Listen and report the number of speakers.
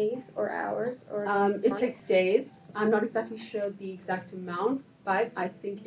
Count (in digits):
2